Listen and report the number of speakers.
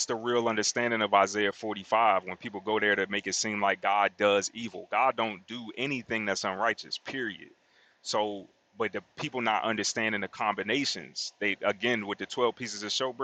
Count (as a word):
one